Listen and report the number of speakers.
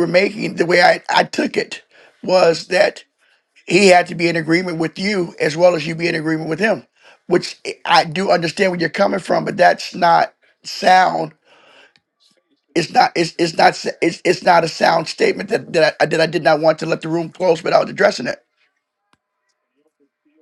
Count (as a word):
one